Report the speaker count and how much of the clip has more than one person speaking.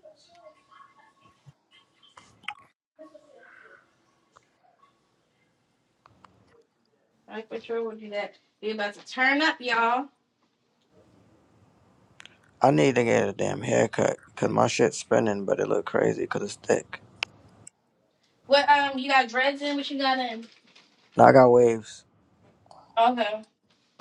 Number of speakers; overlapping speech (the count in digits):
2, no overlap